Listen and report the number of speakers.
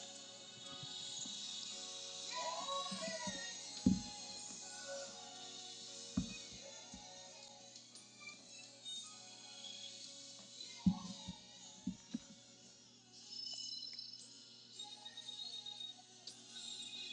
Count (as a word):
zero